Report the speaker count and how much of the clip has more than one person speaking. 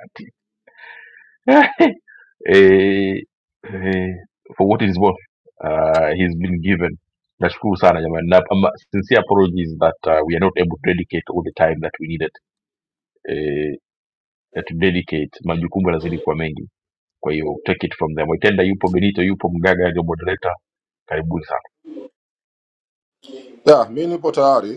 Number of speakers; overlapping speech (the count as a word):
two, no overlap